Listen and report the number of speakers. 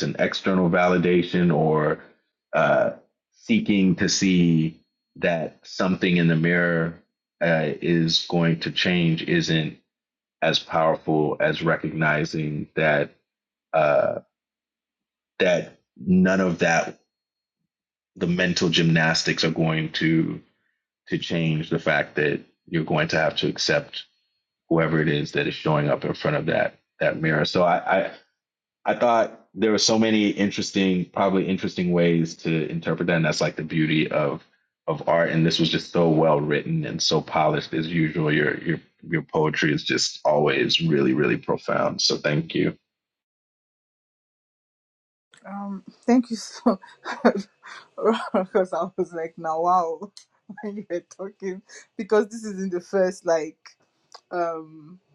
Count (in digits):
2